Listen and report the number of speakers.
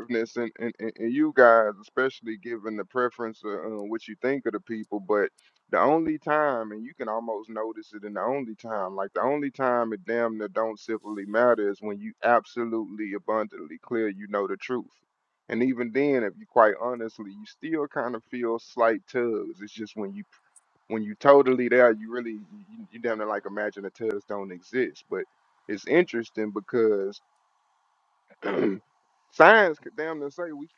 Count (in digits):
1